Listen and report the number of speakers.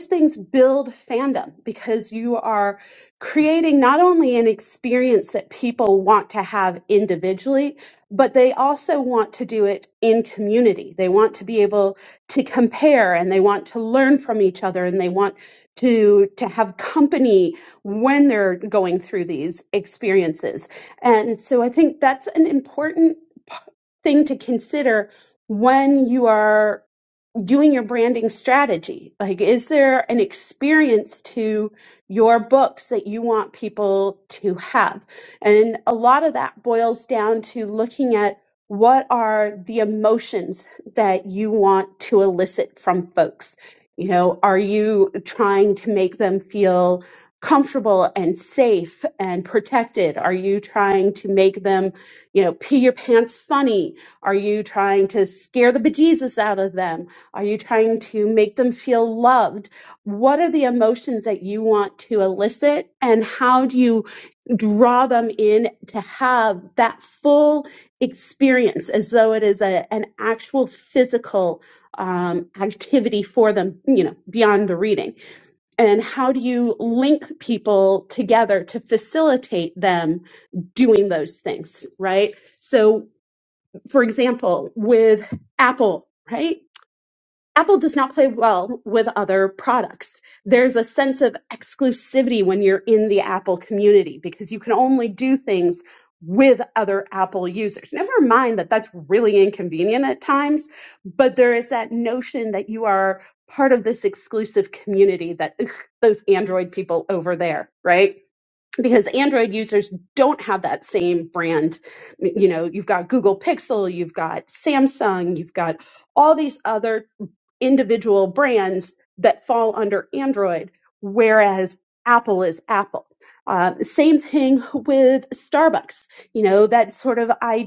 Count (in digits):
1